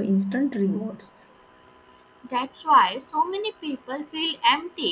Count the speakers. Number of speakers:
2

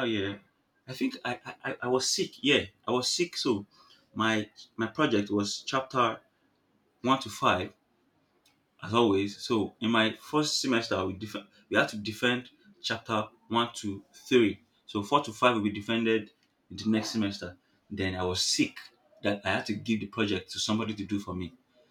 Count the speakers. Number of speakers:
1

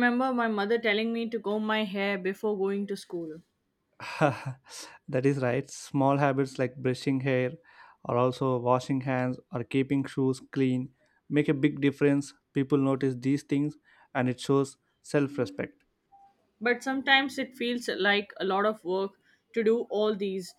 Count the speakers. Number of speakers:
2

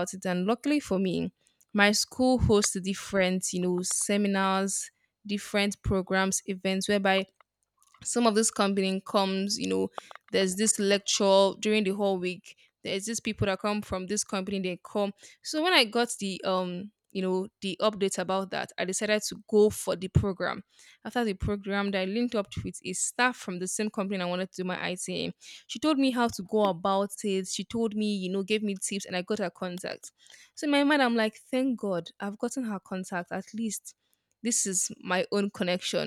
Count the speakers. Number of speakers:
1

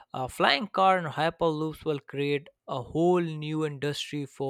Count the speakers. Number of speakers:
1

